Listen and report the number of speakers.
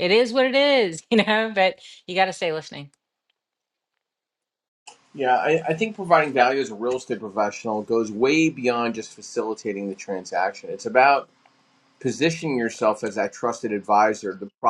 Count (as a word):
two